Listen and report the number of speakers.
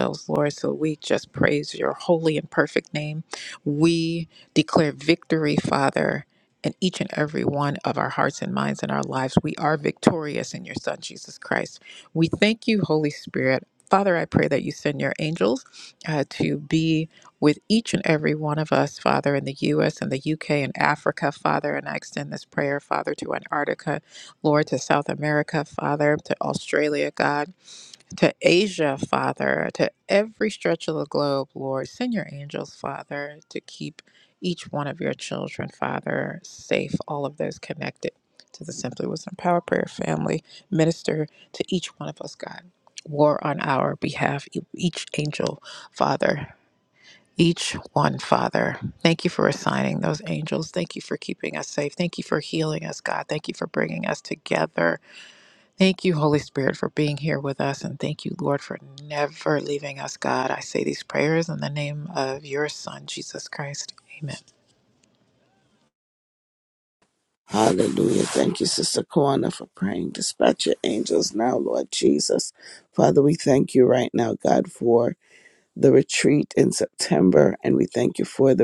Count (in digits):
2